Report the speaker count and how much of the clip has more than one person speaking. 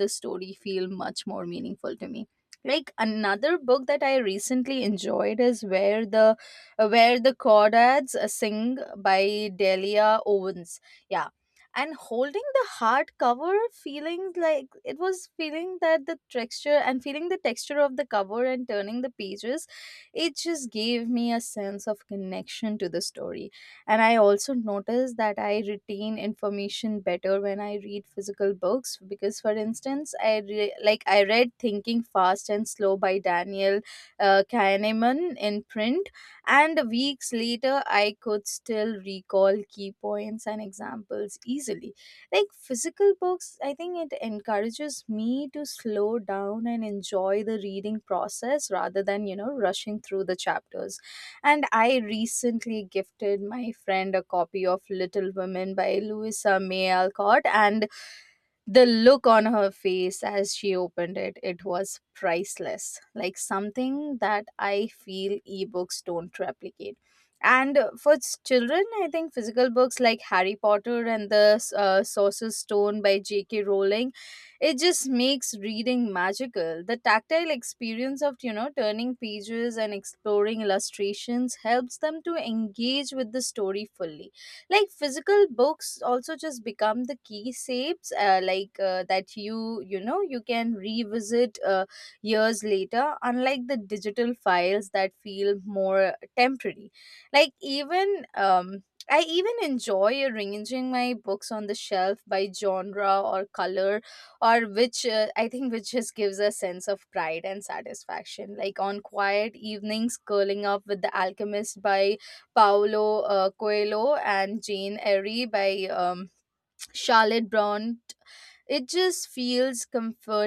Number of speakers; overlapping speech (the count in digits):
1, no overlap